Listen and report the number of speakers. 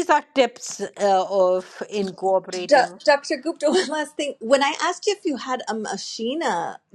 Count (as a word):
two